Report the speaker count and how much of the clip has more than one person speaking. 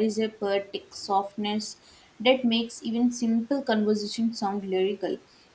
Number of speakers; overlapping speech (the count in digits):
1, no overlap